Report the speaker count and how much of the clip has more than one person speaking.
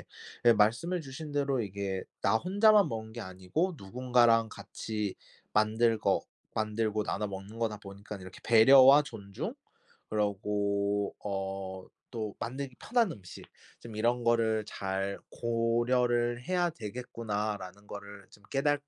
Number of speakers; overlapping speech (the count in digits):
1, no overlap